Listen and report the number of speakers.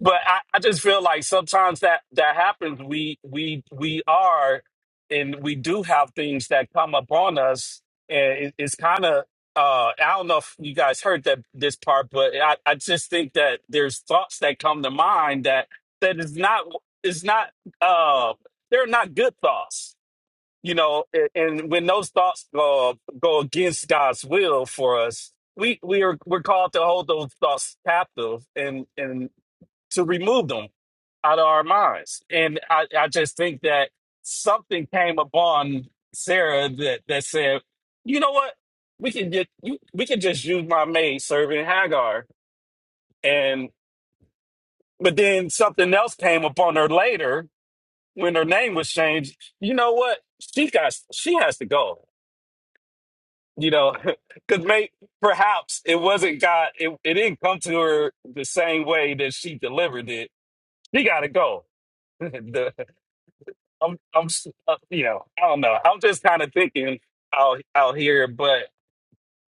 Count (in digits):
1